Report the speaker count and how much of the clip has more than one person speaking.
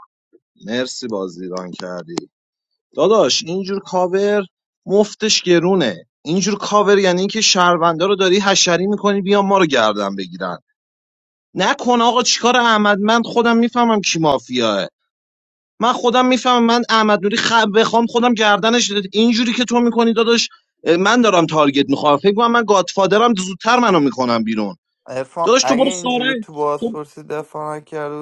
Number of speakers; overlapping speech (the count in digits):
2, about 4%